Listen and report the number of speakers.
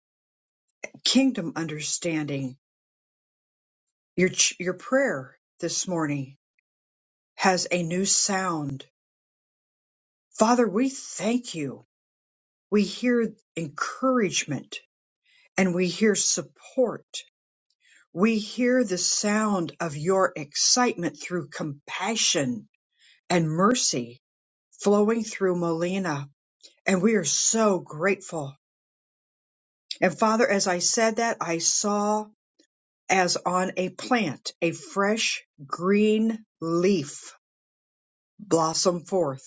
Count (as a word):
one